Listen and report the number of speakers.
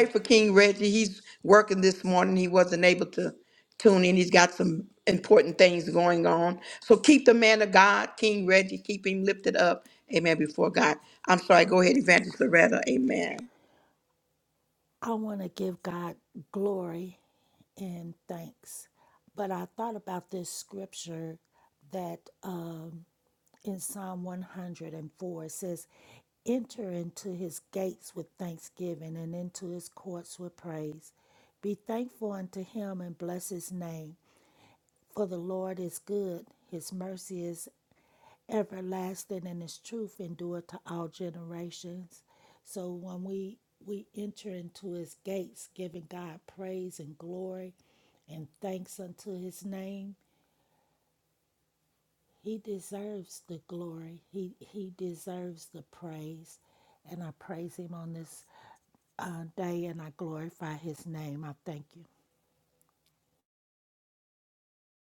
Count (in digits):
2